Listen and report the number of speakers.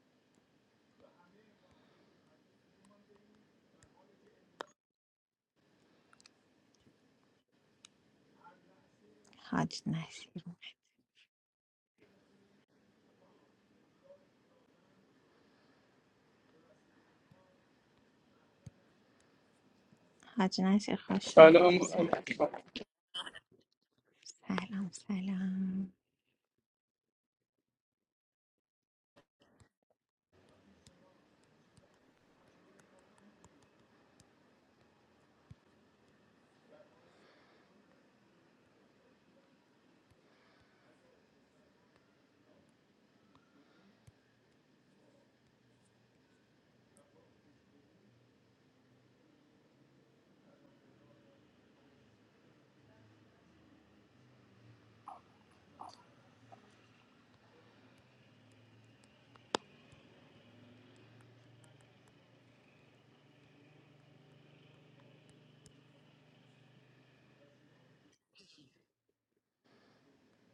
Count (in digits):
2